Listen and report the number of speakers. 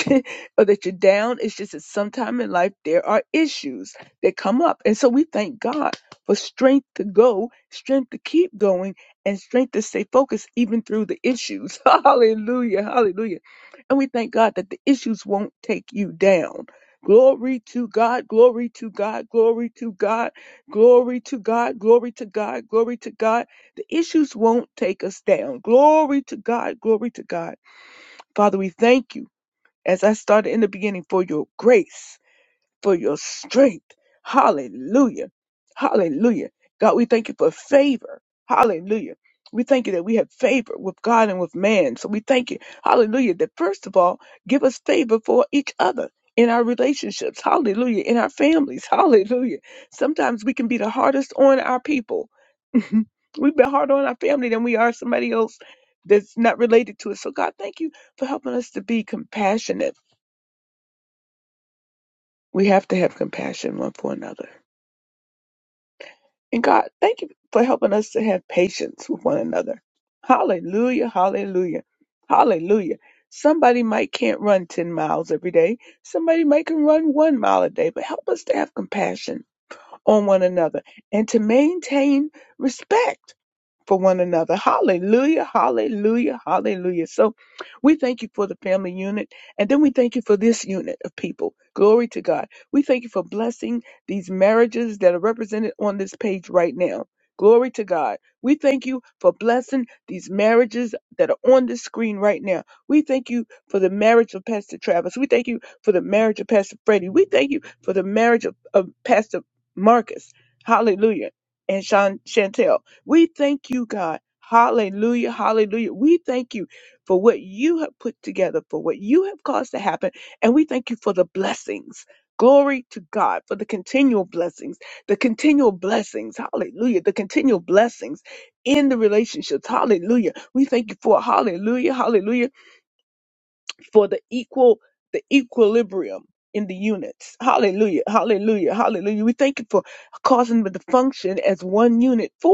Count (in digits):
1